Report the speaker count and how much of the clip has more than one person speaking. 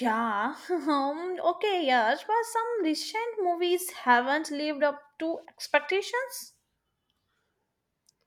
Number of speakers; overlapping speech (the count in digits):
1, no overlap